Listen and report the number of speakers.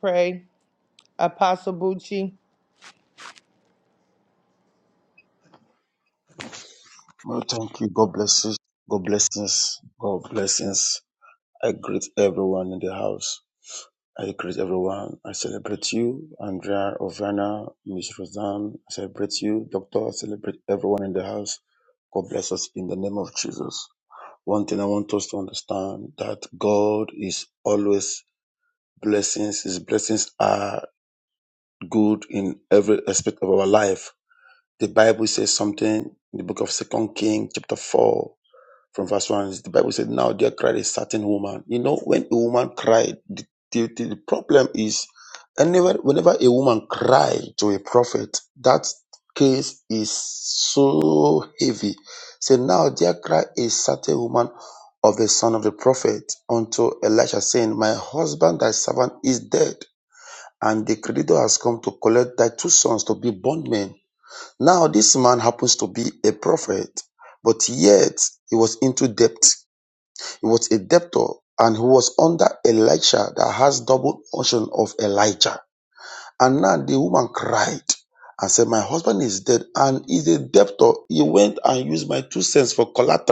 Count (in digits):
2